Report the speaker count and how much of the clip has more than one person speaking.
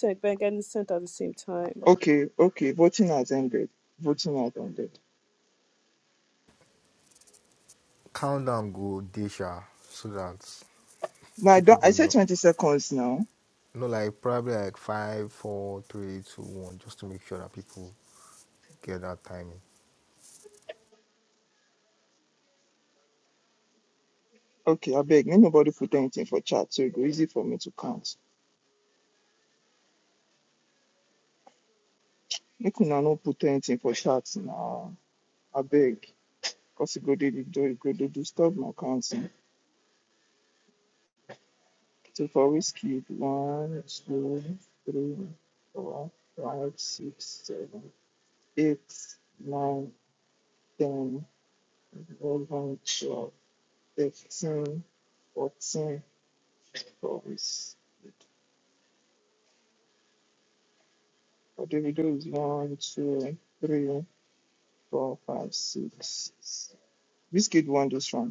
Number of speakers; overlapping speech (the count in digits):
3, about 1%